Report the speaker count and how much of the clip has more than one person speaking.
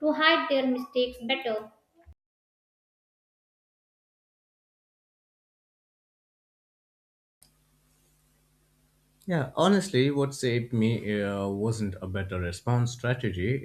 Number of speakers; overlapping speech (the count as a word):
two, no overlap